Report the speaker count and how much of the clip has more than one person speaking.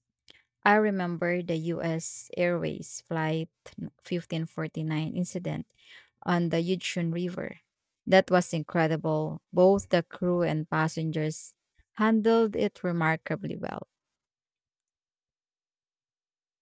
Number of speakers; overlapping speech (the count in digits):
1, no overlap